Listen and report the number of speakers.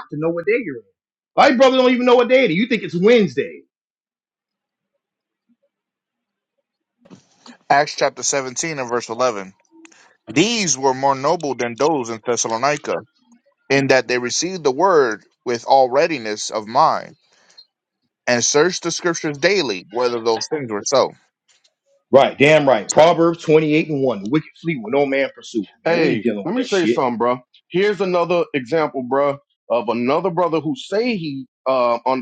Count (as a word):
three